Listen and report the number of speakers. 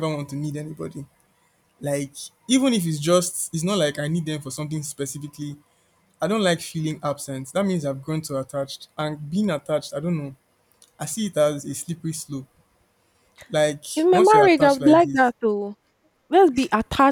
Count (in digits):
2